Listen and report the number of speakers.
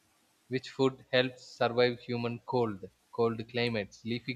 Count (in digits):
1